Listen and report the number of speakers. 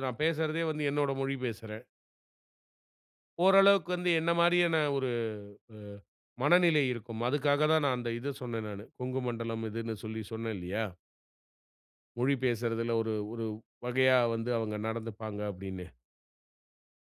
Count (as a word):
one